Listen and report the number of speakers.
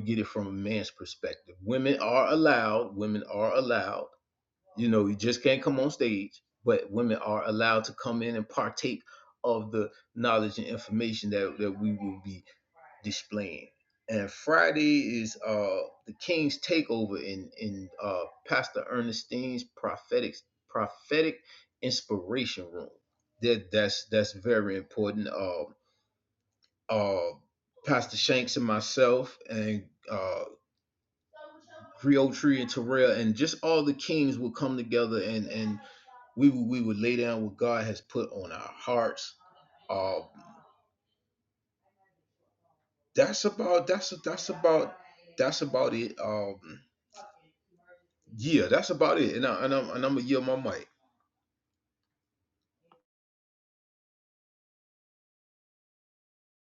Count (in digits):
1